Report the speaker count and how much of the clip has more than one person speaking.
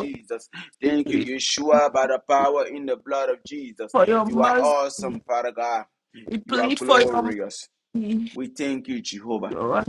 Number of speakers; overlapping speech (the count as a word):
two, about 24%